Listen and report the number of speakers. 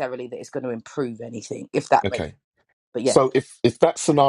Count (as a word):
two